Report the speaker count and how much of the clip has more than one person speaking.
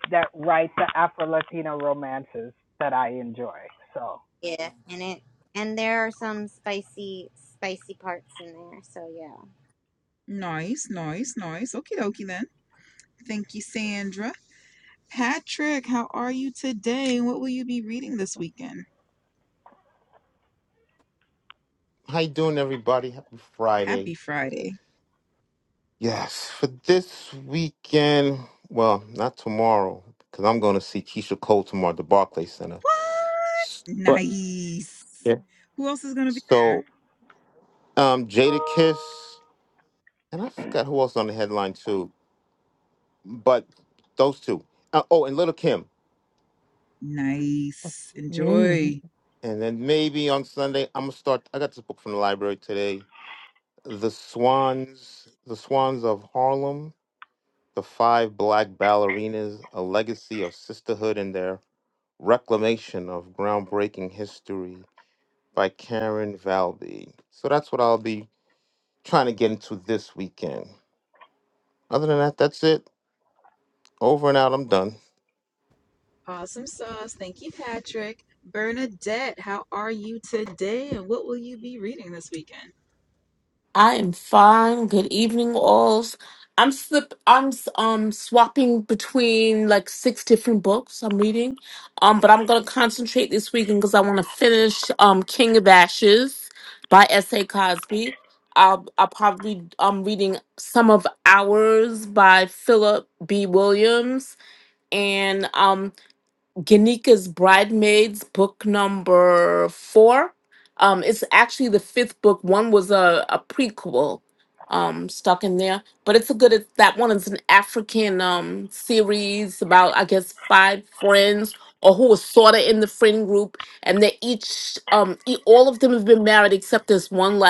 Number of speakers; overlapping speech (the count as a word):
five, about 1%